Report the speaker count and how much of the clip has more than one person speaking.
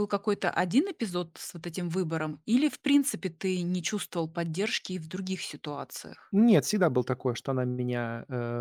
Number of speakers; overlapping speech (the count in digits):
2, no overlap